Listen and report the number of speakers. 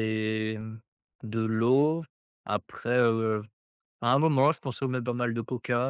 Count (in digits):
1